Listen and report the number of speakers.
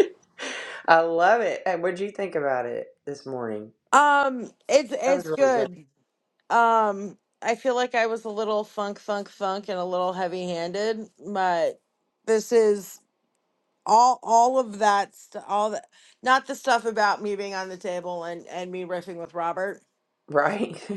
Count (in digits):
2